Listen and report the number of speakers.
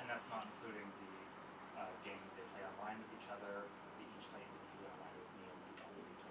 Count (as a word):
one